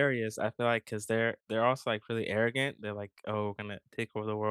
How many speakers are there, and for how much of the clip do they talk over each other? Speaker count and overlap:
1, no overlap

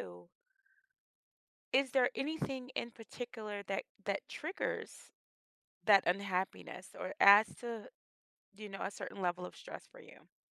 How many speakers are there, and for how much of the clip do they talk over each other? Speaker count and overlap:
1, no overlap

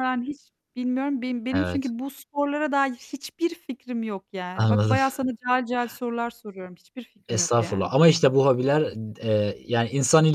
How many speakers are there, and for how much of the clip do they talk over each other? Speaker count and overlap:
2, about 15%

